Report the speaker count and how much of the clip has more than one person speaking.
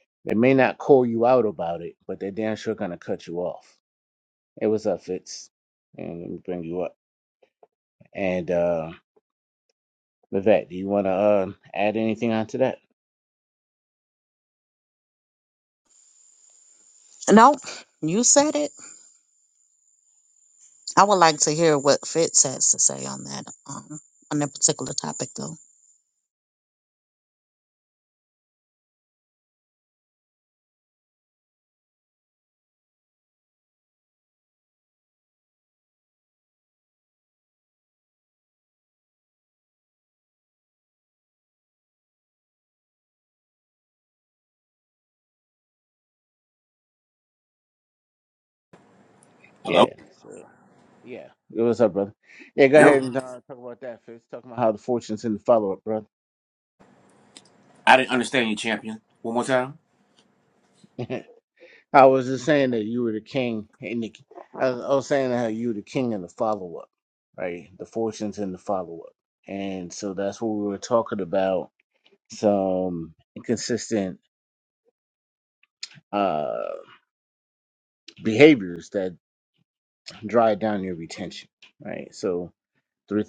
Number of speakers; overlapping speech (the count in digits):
3, about 1%